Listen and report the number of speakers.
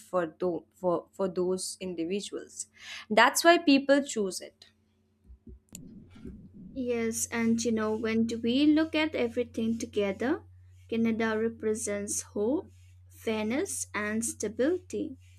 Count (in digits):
2